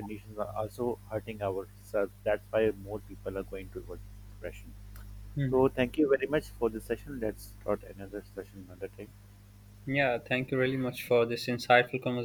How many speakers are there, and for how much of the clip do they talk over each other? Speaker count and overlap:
2, about 1%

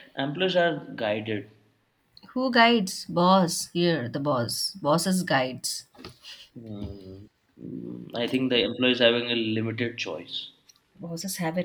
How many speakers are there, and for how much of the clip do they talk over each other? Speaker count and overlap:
2, no overlap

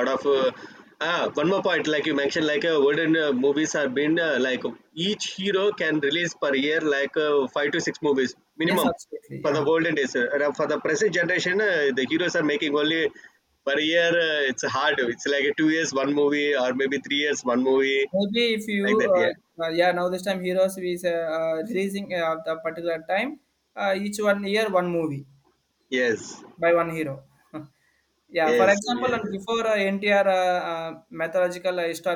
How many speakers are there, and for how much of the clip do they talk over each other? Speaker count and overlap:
2, about 6%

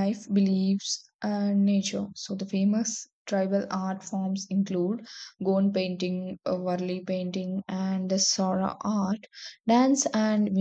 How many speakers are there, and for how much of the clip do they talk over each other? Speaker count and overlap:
1, no overlap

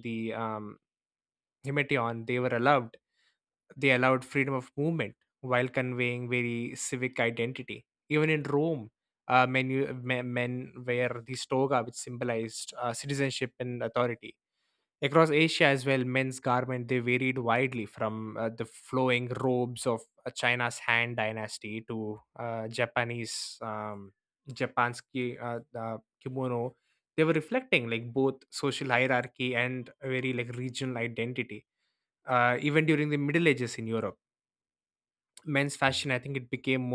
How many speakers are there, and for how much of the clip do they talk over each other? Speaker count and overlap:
1, no overlap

